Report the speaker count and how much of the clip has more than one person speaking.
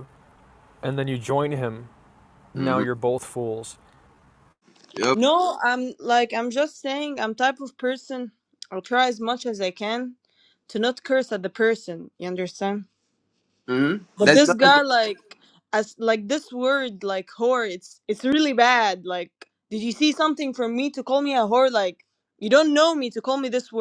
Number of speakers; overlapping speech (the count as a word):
three, about 4%